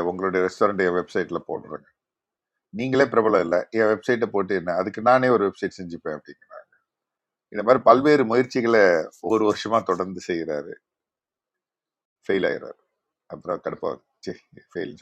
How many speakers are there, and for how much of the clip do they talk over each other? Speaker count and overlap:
one, no overlap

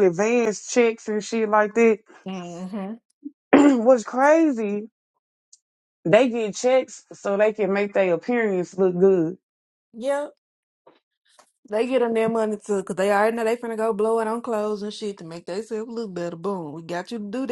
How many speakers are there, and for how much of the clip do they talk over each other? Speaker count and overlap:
two, no overlap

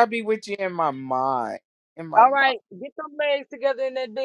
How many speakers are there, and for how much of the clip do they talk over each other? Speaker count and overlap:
two, about 9%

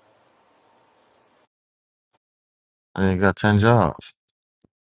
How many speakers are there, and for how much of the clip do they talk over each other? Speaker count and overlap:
one, no overlap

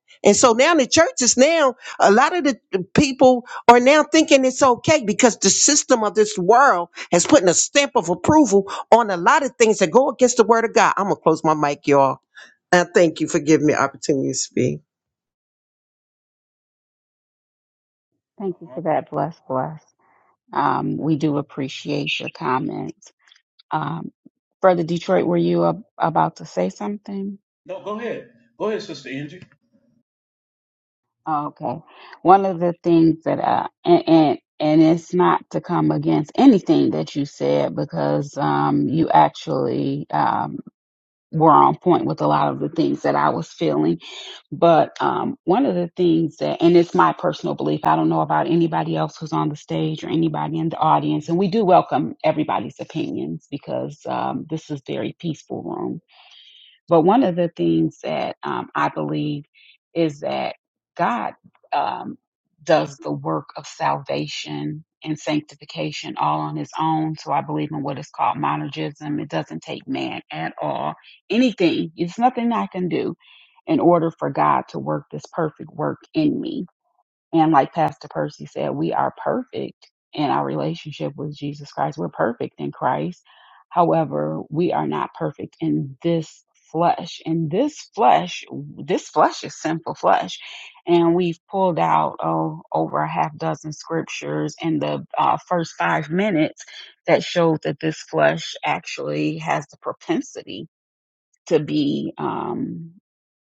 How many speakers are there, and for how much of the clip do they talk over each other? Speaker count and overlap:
three, under 1%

